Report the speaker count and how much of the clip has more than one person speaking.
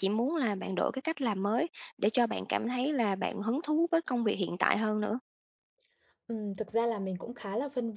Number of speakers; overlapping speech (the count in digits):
2, no overlap